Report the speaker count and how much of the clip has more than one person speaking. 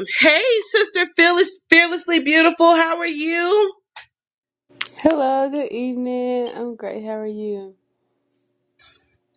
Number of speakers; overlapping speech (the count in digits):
2, no overlap